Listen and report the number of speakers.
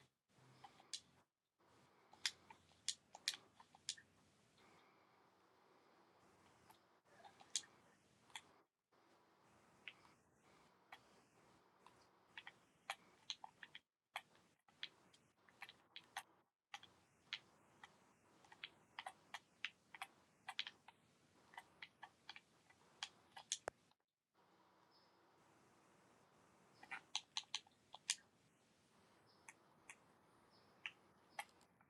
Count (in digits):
0